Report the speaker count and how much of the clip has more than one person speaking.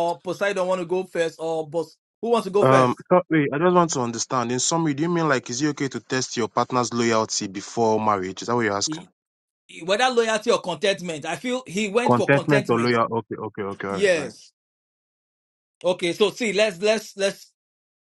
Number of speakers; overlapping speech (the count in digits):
2, about 9%